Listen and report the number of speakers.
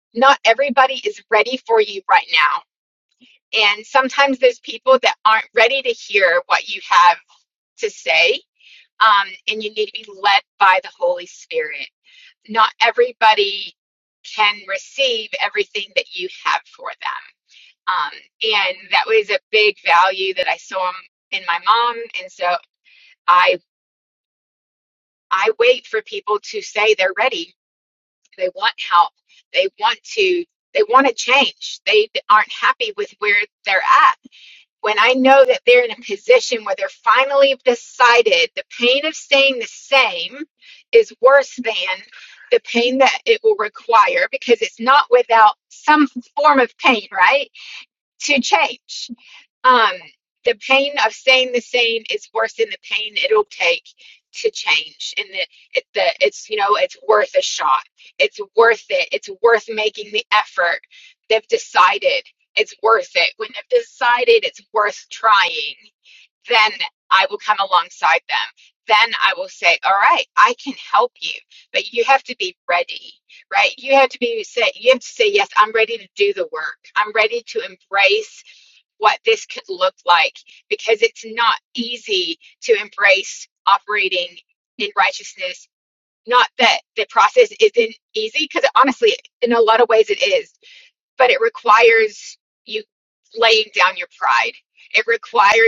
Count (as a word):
one